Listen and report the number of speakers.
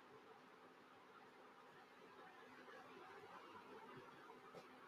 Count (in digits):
0